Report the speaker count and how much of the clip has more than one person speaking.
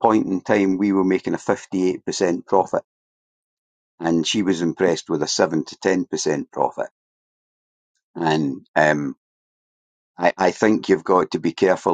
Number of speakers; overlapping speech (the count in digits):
1, no overlap